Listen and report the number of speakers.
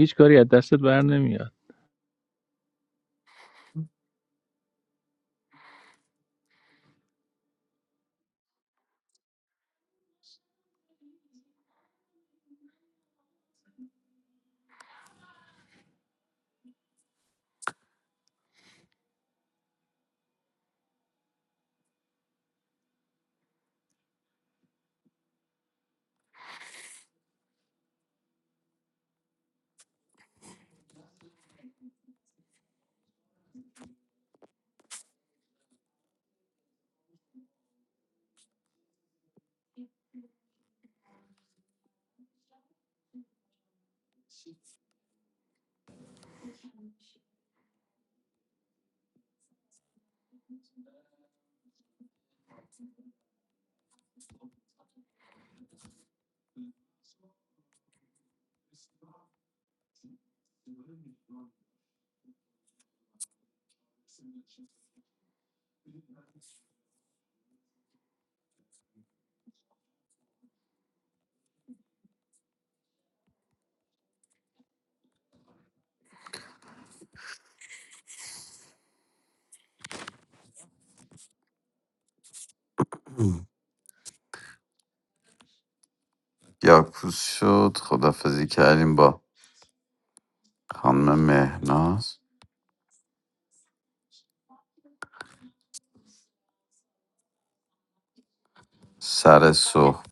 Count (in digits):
2